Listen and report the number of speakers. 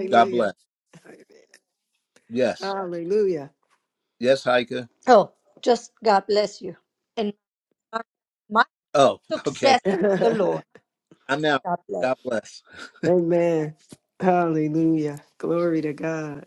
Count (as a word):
three